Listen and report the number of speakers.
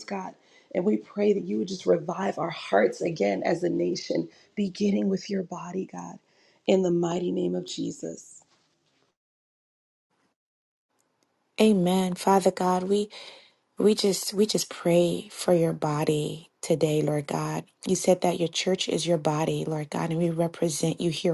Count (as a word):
two